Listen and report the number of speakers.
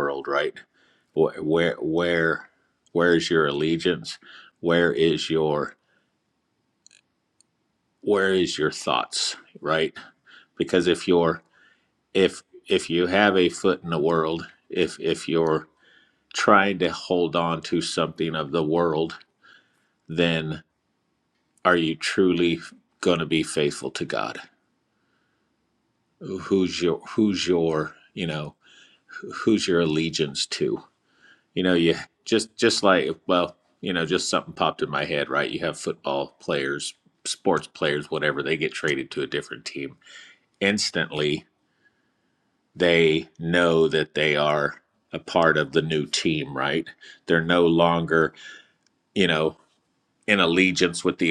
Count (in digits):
1